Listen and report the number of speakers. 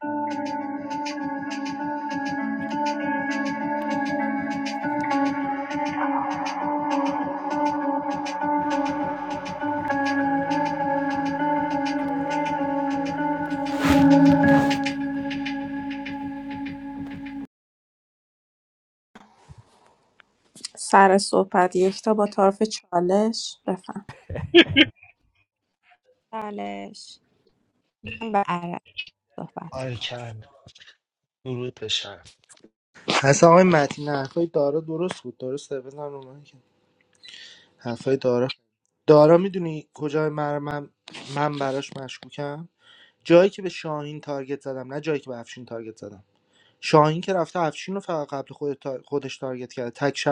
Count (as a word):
three